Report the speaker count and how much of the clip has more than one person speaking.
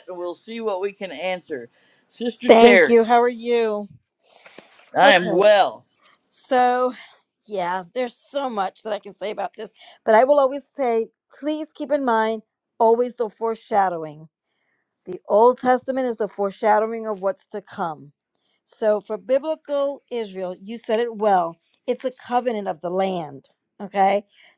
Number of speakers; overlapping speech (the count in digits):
2, about 4%